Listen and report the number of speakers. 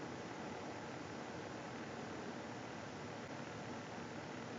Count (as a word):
zero